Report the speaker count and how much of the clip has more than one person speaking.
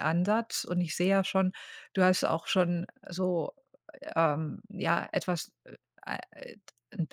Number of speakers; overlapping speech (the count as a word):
one, no overlap